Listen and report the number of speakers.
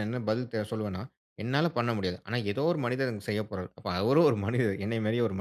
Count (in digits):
1